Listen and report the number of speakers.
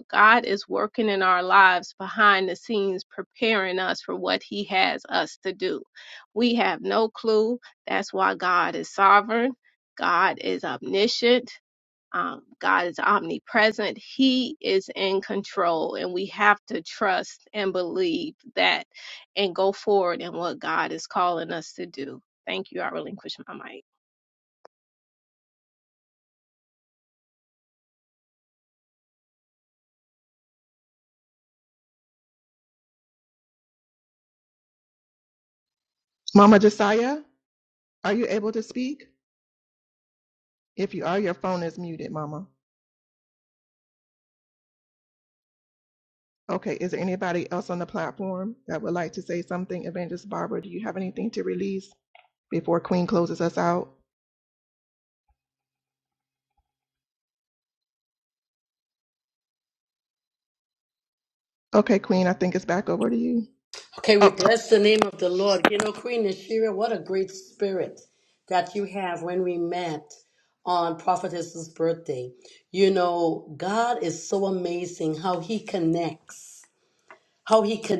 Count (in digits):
3